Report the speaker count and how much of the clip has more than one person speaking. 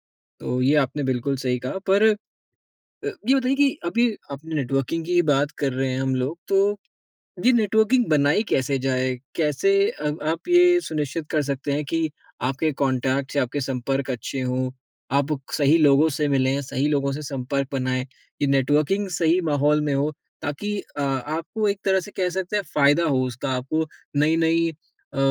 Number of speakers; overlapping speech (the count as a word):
one, no overlap